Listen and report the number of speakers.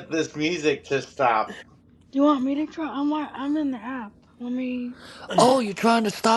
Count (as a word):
three